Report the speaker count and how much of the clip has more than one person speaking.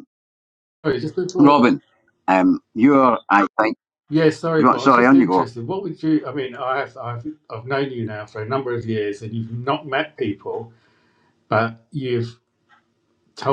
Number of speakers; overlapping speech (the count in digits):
2, about 7%